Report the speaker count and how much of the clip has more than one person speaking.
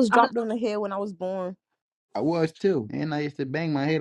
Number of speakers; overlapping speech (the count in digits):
2, no overlap